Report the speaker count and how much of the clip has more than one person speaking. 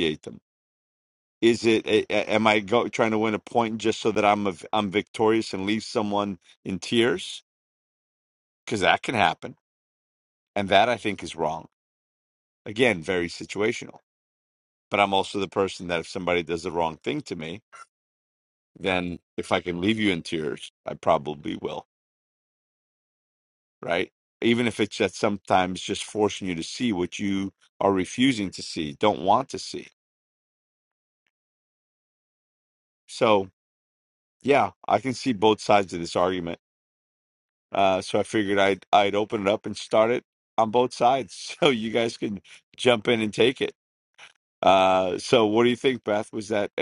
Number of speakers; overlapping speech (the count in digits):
1, no overlap